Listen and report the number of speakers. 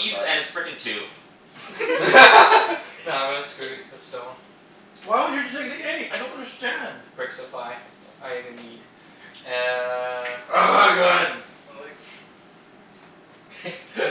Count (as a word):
four